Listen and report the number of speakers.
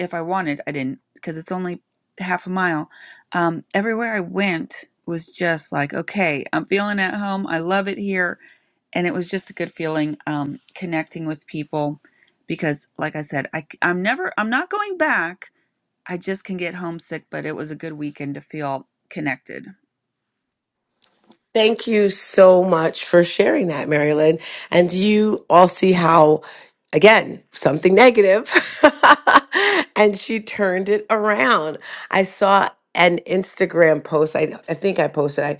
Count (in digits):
2